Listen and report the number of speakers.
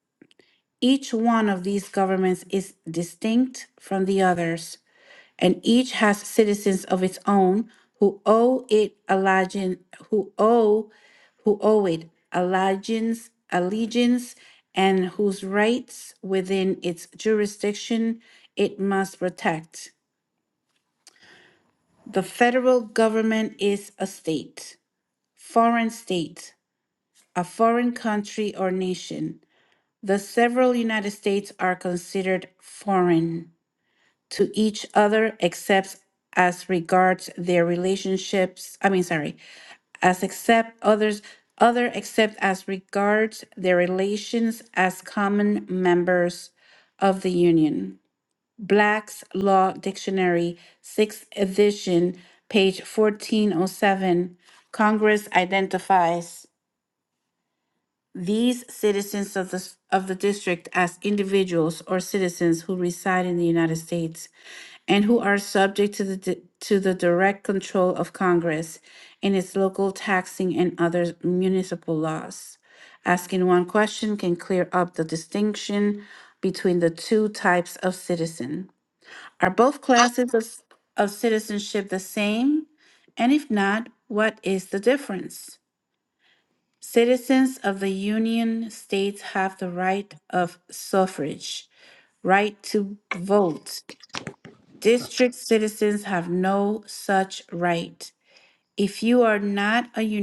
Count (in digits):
1